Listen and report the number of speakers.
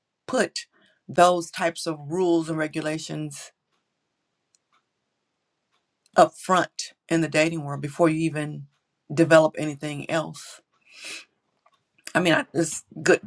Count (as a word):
one